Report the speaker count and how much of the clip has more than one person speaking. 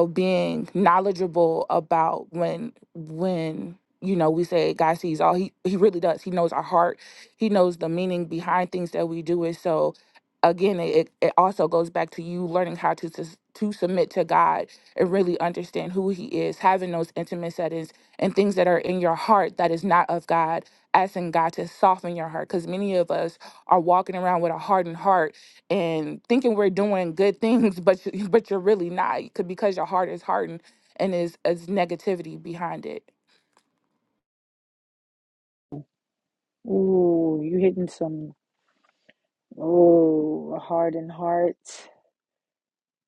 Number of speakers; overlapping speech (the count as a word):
two, no overlap